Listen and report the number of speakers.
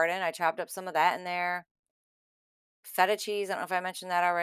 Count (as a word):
one